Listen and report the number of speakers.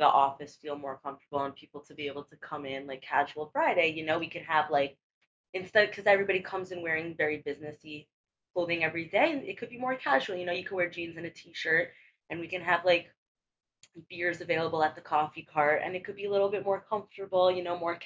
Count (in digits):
1